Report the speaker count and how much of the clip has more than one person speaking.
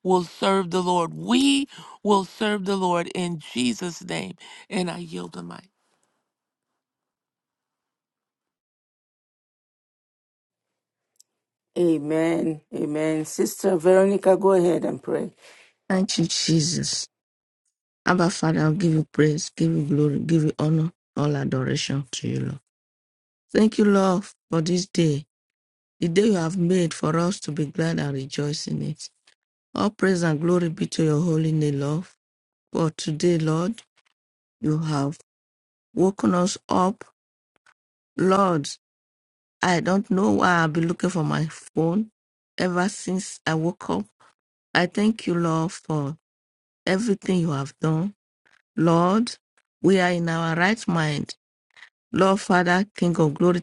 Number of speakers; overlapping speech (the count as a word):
three, no overlap